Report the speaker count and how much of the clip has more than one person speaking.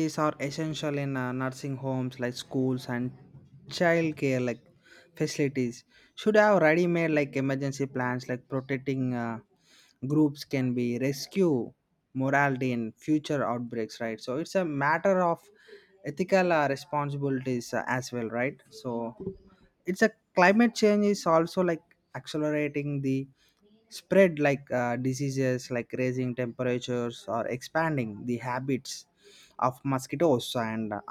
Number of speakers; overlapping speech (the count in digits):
1, no overlap